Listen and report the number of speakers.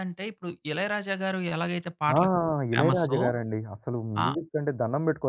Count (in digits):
2